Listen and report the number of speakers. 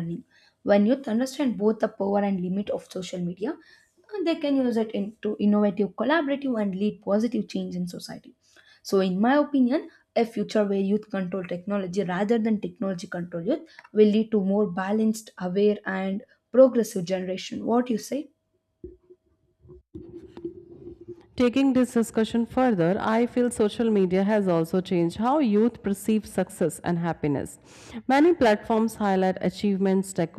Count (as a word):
two